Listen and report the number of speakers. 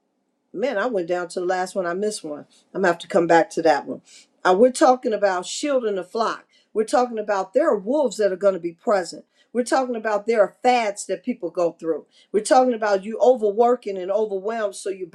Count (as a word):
one